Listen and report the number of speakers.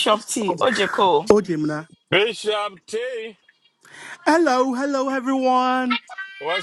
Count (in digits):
3